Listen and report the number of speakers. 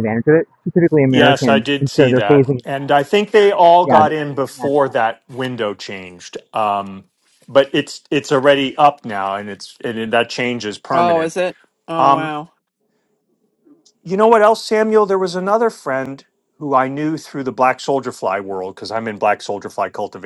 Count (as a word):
three